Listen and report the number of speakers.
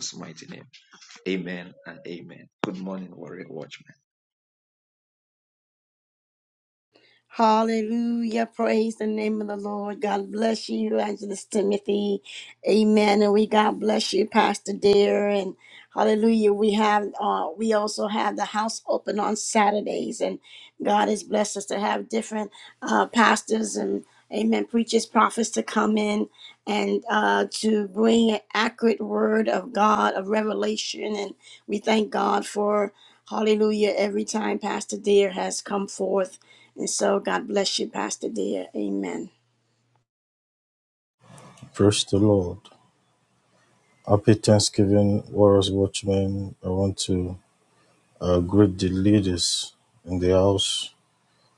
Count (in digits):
3